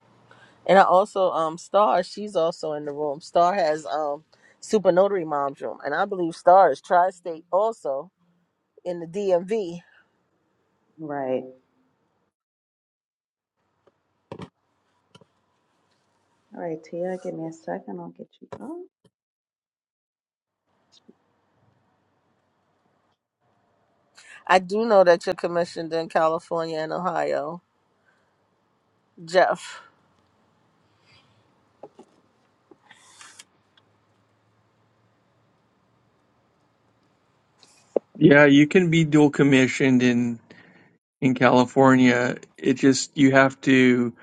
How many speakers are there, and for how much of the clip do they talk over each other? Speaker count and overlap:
three, no overlap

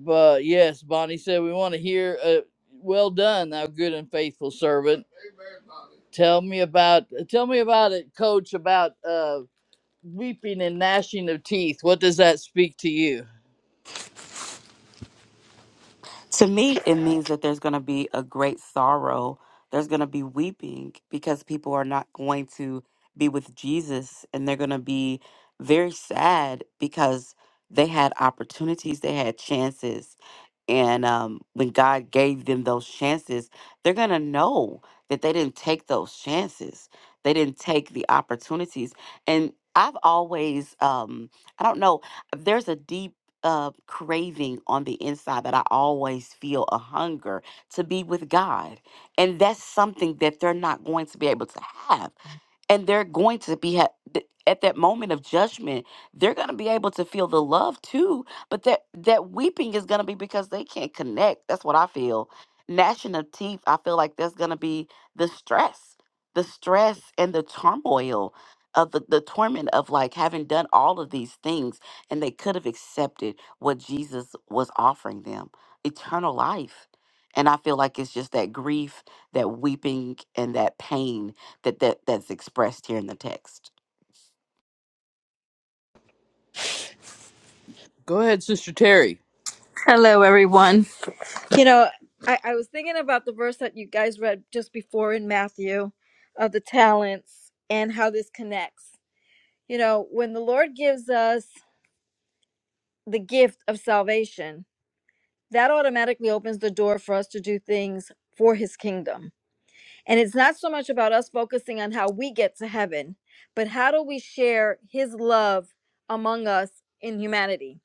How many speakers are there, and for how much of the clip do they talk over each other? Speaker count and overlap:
three, no overlap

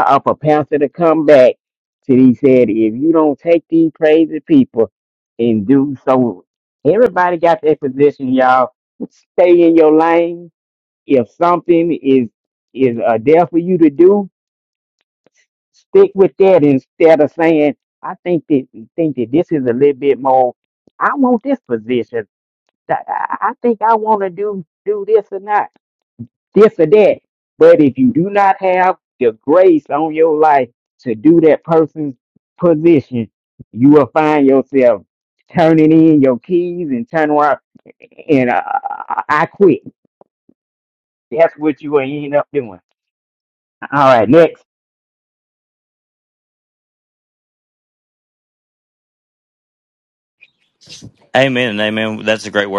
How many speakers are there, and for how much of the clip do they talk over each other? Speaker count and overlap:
two, no overlap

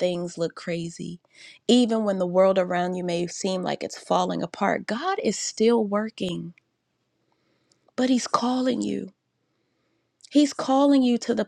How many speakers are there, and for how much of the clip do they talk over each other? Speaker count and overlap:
one, no overlap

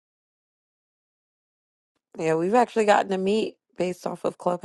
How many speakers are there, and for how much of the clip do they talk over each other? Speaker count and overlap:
one, no overlap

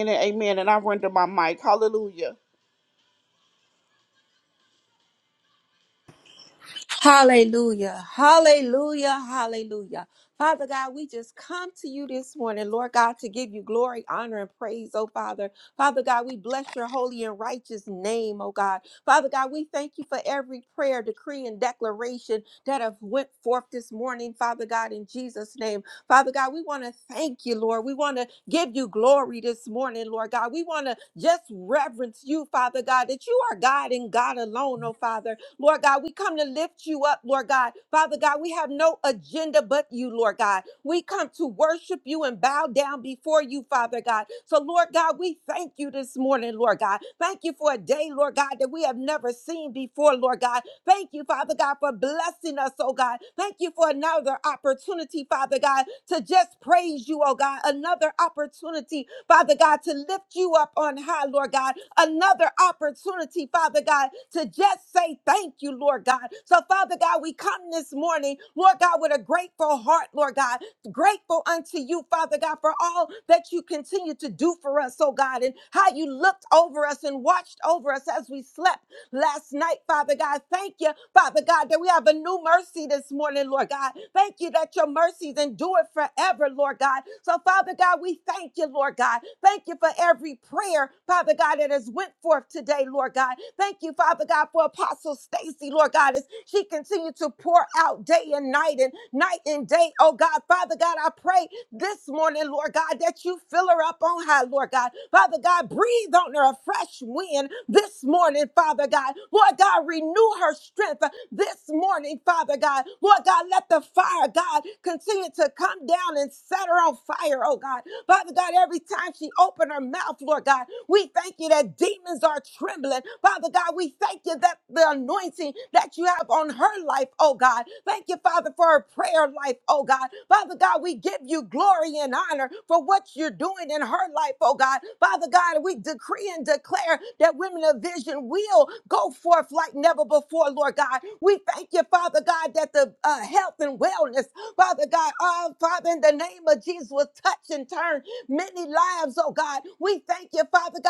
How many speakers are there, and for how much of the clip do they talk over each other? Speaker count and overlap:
two, no overlap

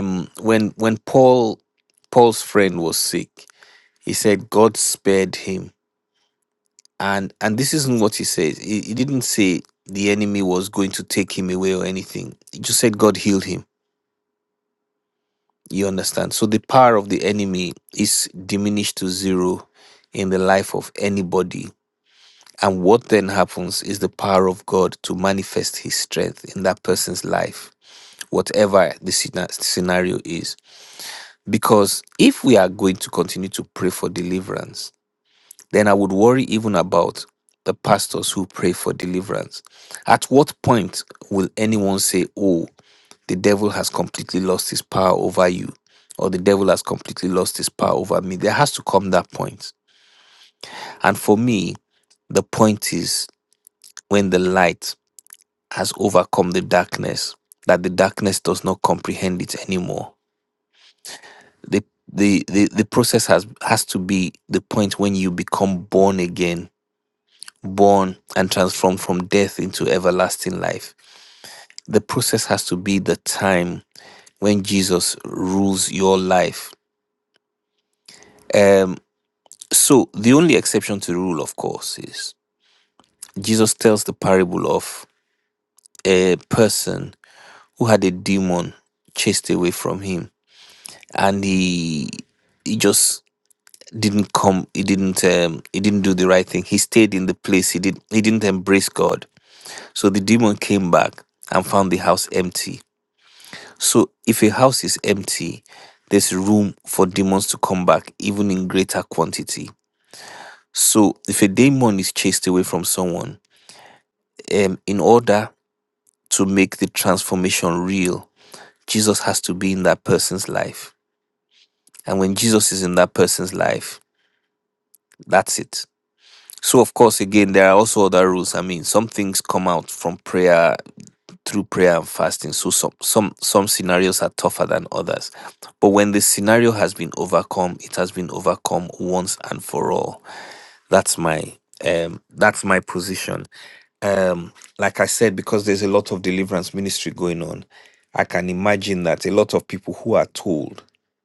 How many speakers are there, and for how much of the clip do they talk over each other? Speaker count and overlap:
one, no overlap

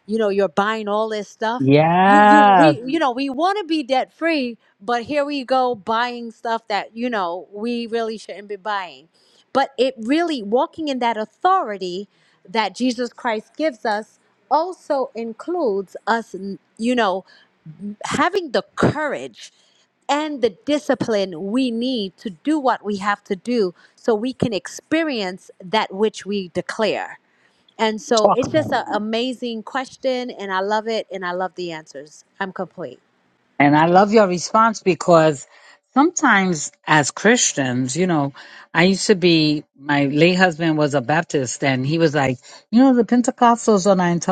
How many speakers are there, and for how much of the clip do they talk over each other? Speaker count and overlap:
two, about 3%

